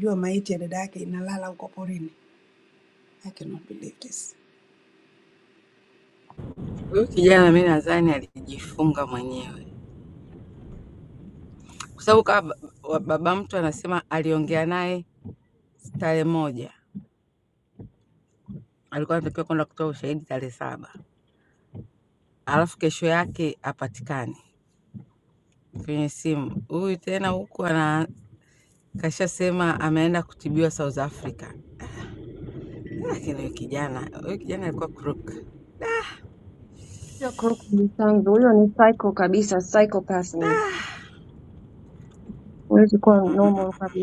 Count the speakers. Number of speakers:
three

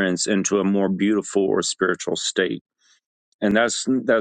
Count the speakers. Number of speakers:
one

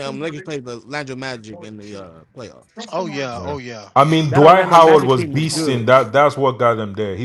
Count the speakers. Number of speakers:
three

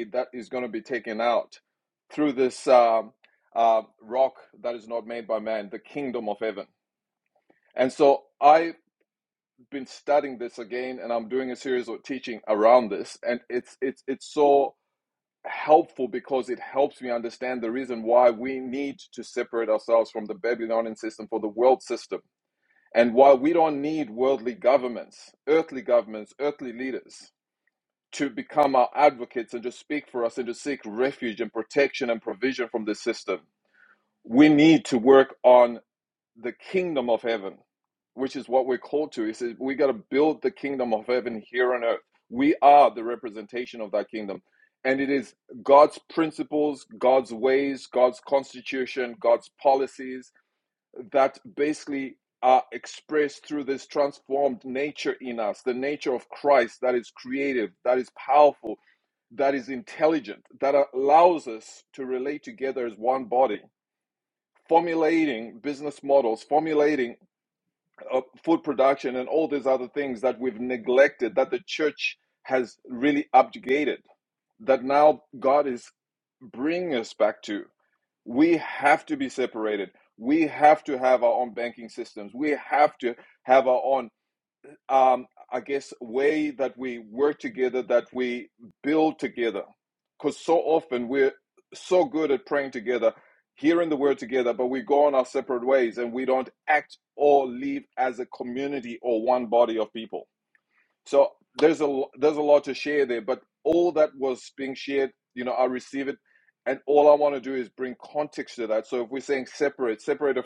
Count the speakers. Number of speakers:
one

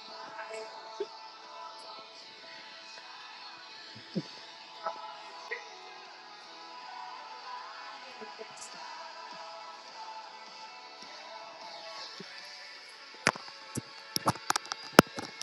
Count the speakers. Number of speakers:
zero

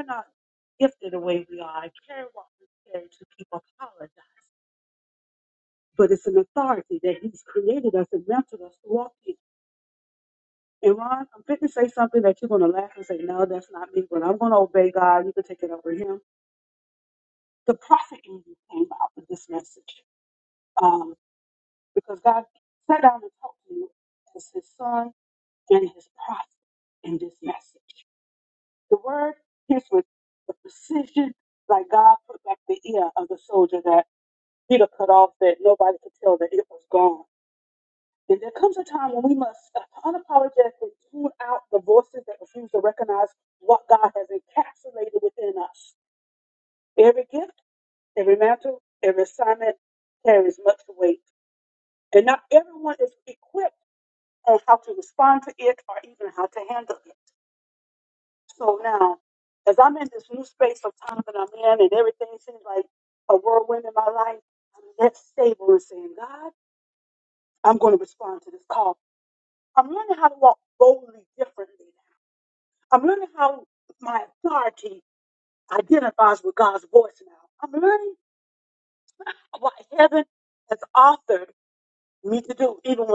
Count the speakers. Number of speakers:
one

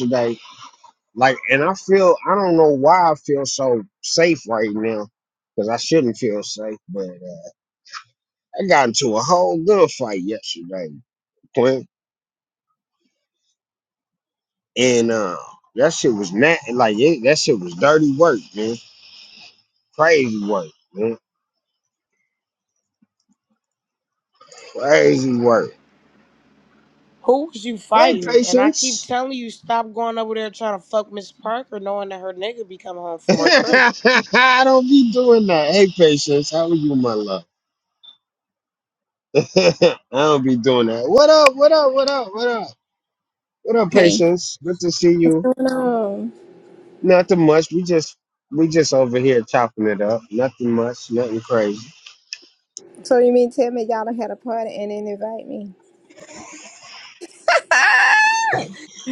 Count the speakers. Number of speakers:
three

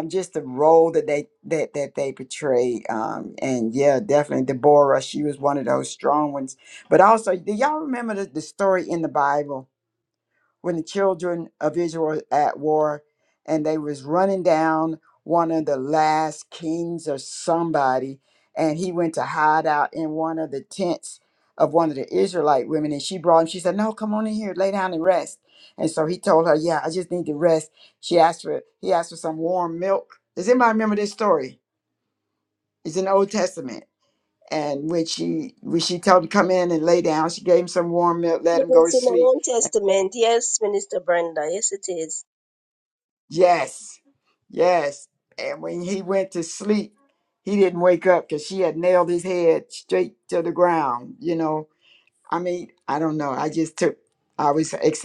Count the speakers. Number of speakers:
two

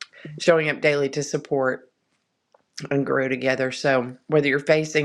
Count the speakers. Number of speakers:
one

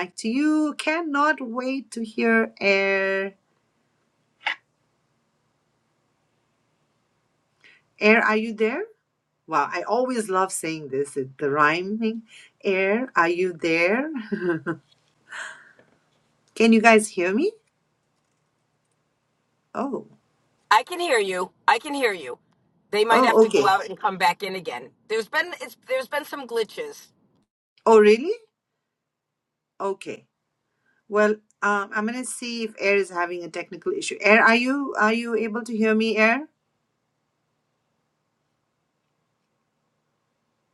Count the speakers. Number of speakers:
two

